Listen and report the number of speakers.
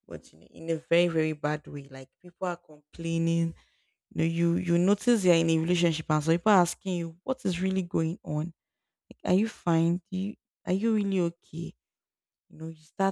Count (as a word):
one